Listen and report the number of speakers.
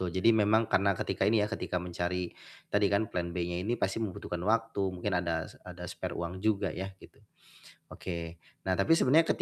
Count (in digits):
1